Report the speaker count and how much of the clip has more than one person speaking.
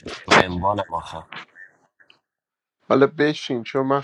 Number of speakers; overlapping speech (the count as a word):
two, no overlap